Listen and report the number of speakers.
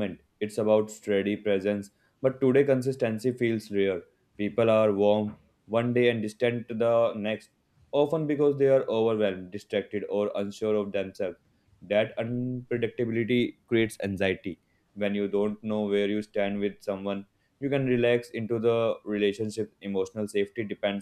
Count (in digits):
1